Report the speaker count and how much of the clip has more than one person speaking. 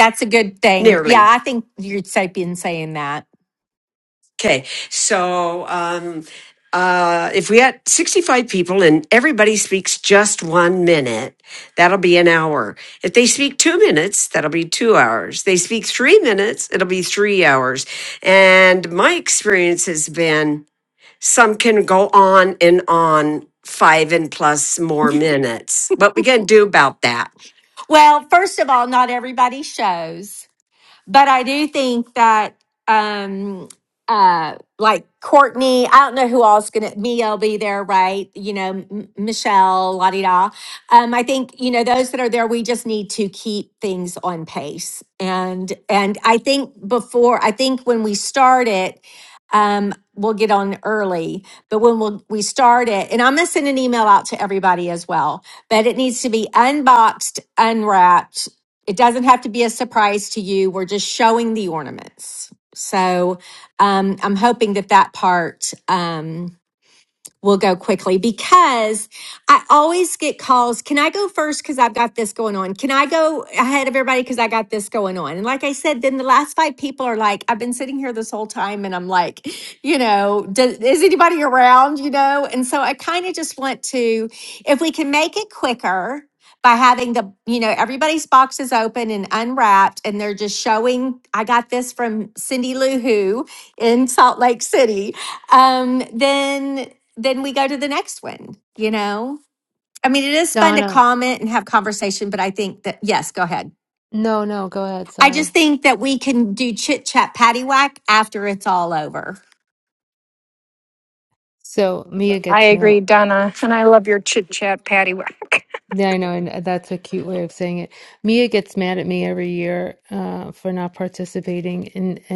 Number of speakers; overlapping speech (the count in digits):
4, about 1%